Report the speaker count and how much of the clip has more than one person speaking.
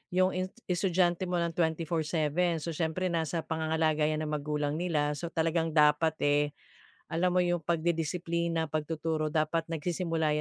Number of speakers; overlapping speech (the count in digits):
1, no overlap